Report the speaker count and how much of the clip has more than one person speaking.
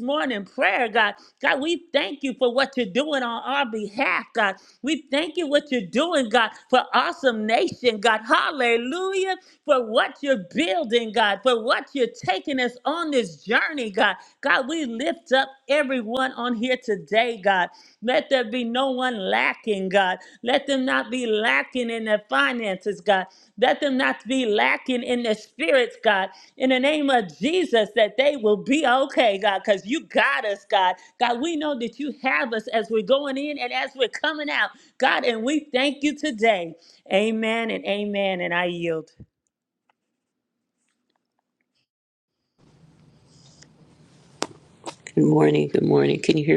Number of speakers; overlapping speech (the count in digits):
2, no overlap